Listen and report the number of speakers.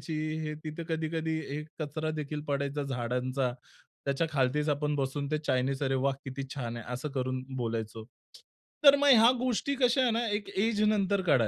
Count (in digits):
1